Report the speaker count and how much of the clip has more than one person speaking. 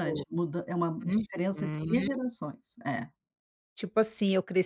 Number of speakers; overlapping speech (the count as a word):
two, about 28%